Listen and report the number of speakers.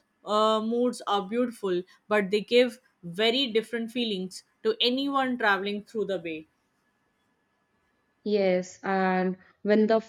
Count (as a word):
two